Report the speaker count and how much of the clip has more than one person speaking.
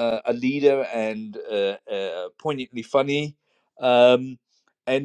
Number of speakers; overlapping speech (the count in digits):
1, no overlap